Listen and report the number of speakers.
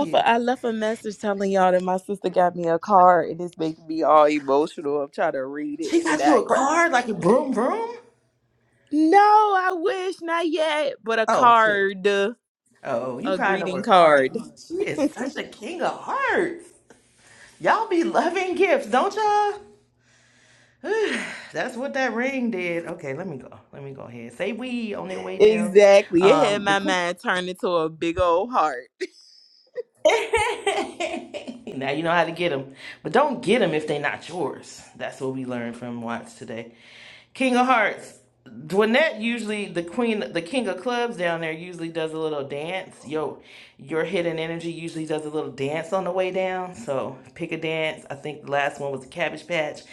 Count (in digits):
2